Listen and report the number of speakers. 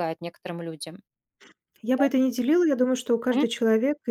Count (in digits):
2